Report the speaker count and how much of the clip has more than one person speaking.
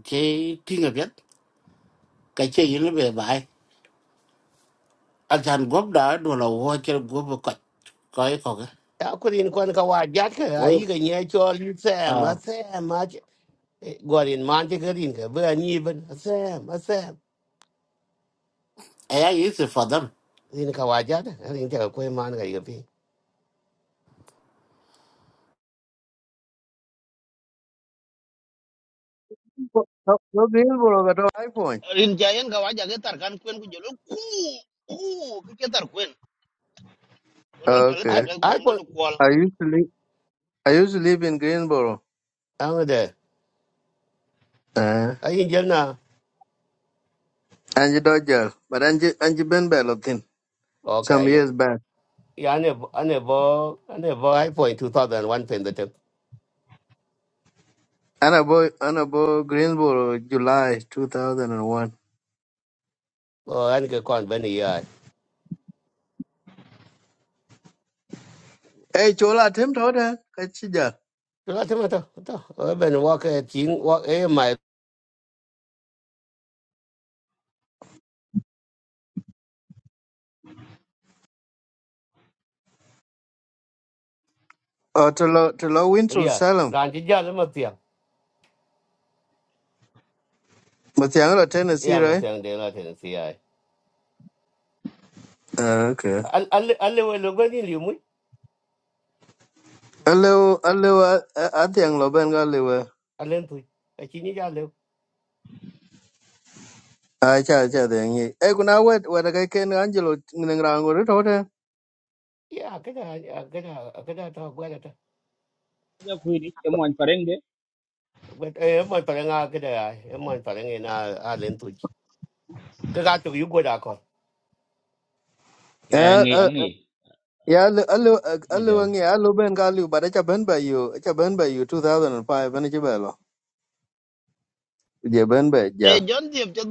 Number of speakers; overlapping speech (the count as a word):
five, about 3%